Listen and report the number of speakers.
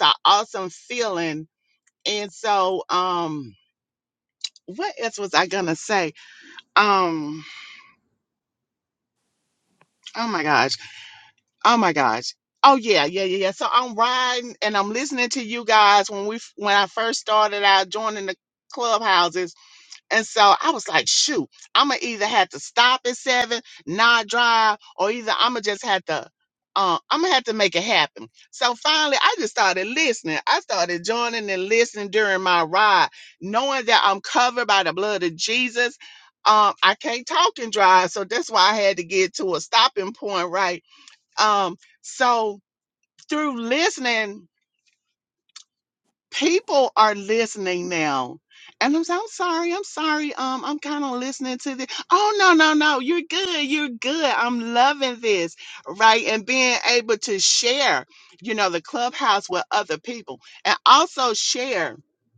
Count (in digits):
1